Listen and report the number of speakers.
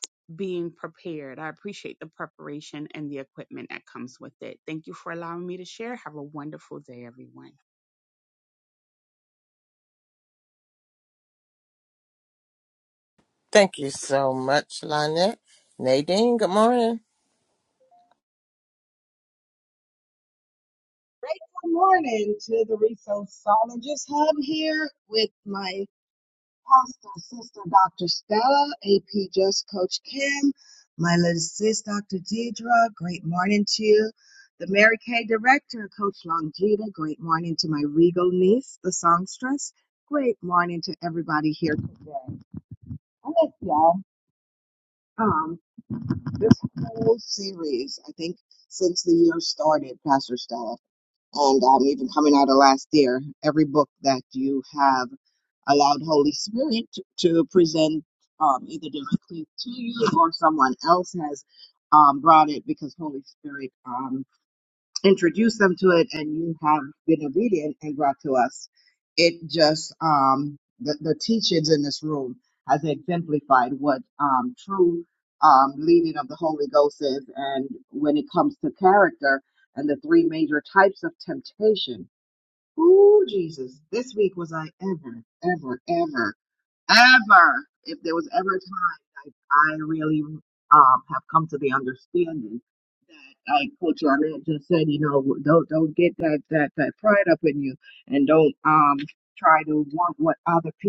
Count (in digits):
3